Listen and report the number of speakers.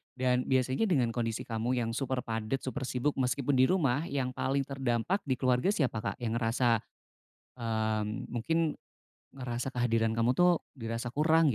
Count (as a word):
one